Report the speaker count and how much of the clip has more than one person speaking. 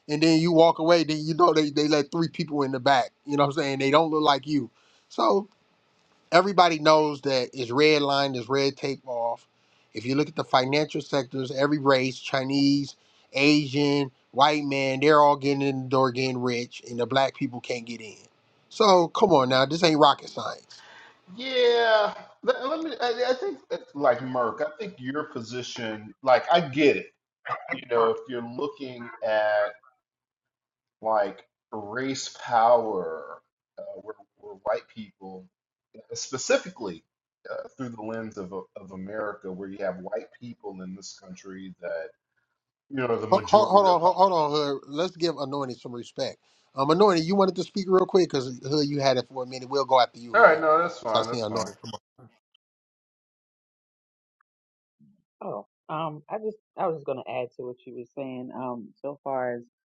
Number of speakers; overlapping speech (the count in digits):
3, about 3%